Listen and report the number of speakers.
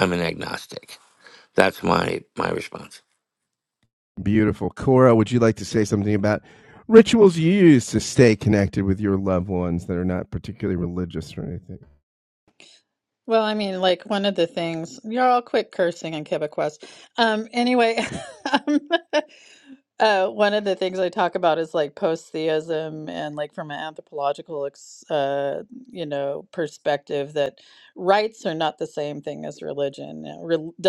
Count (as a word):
three